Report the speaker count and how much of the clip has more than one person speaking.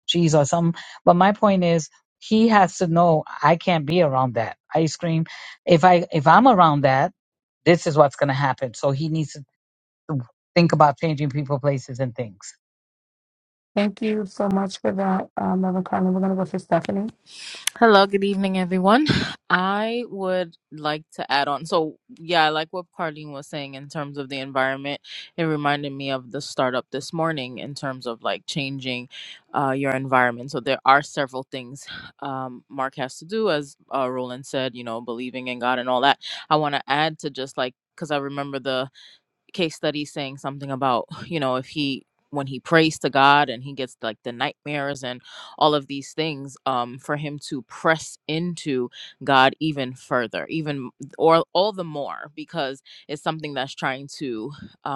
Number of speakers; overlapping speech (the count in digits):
3, no overlap